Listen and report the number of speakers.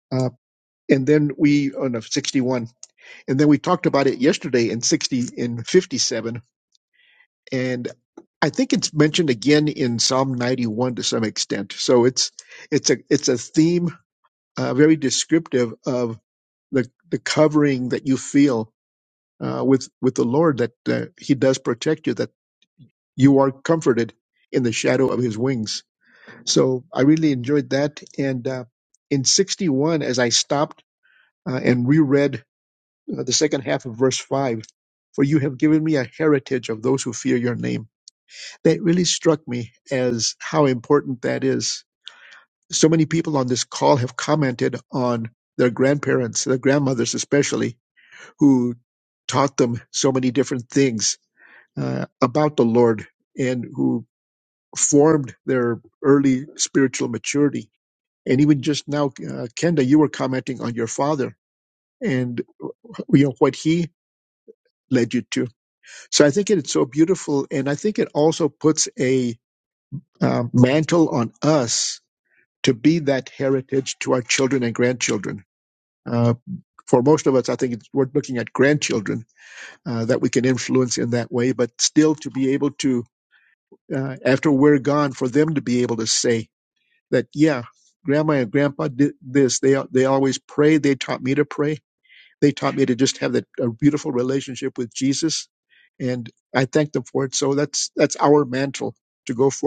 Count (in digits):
1